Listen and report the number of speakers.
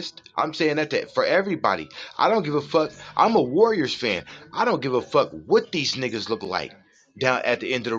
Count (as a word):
one